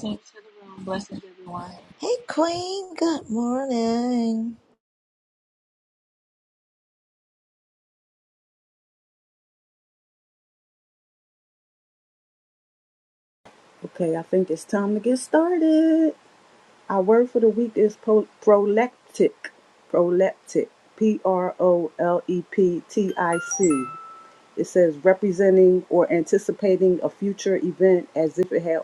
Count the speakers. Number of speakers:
three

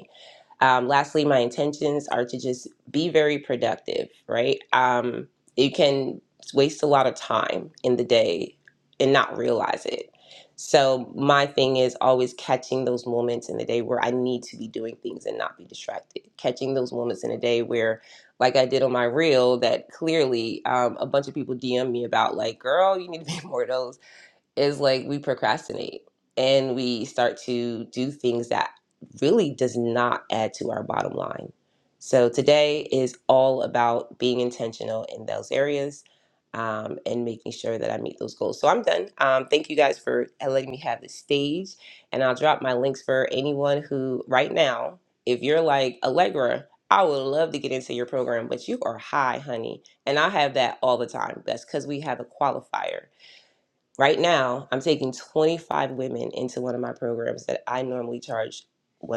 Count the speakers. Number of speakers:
one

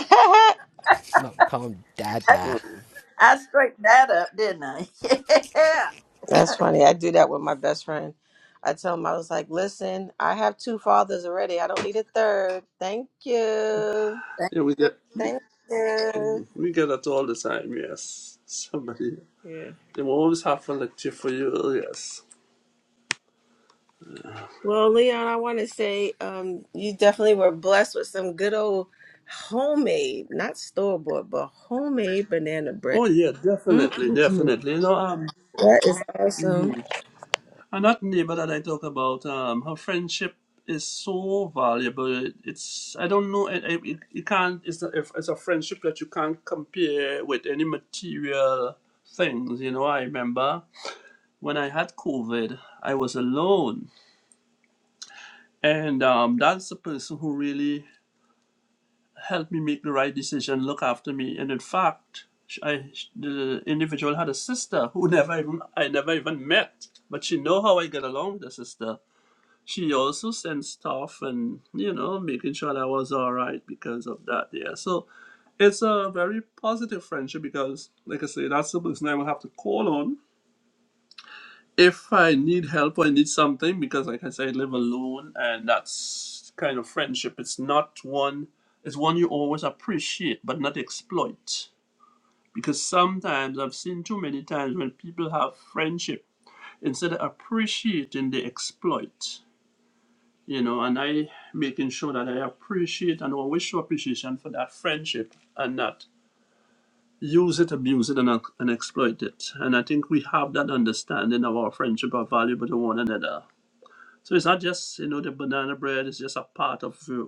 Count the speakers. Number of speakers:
four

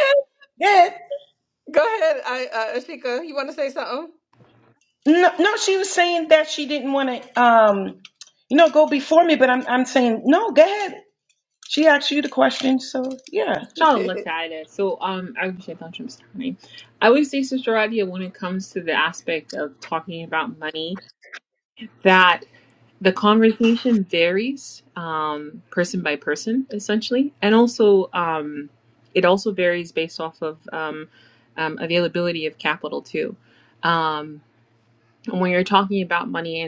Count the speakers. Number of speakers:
three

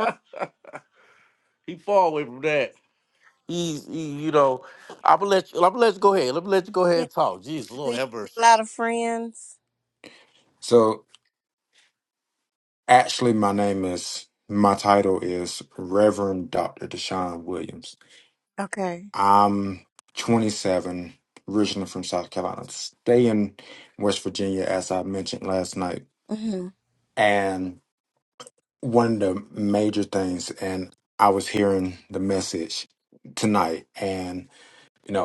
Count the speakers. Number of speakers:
three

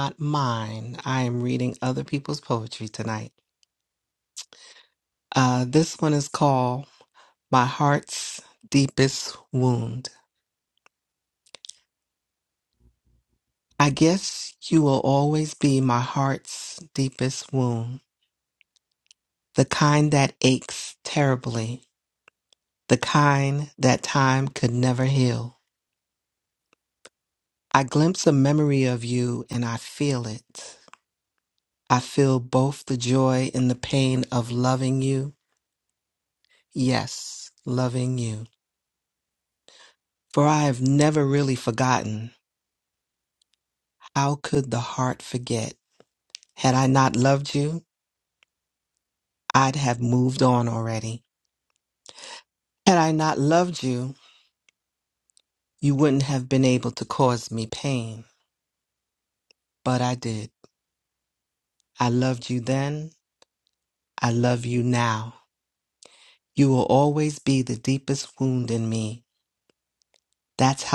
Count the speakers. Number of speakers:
one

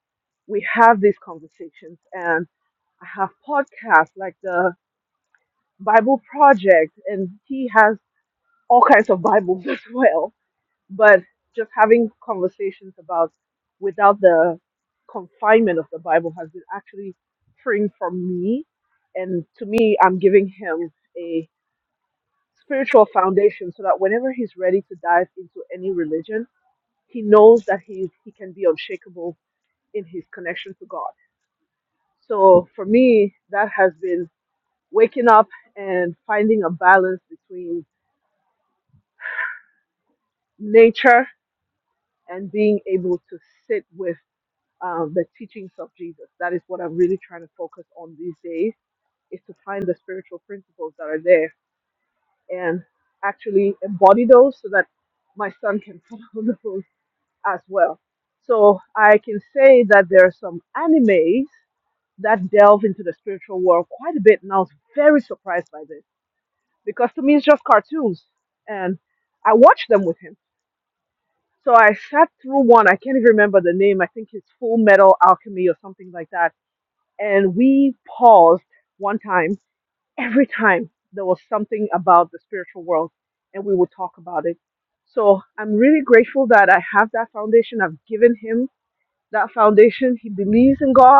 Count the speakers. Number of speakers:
one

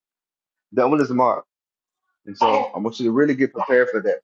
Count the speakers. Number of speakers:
one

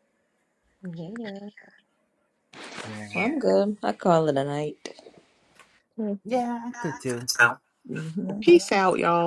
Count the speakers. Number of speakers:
three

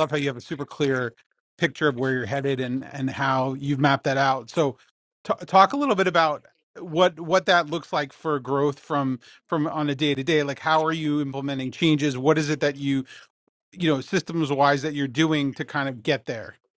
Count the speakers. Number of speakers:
one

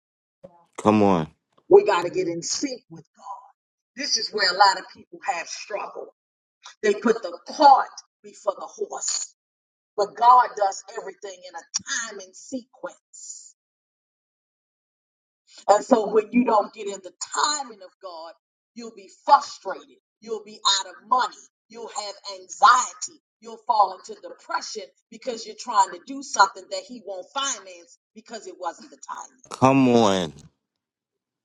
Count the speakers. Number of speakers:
two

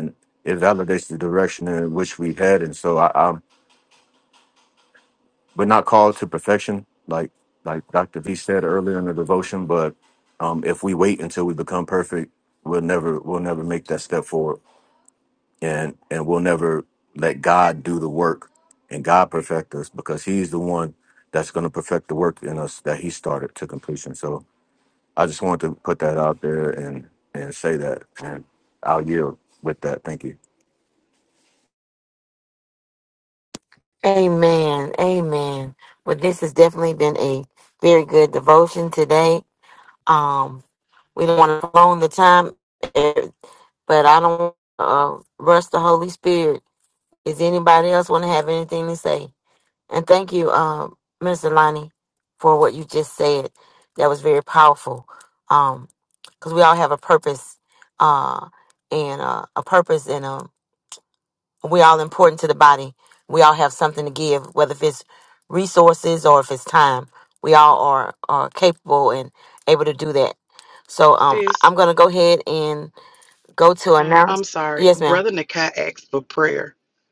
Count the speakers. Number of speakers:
three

